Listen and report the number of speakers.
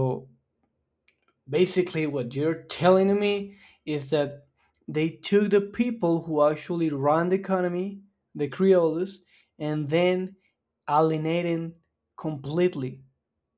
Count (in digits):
1